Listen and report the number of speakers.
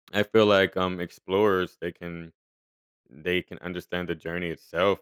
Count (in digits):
1